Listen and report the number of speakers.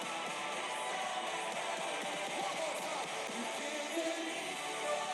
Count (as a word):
zero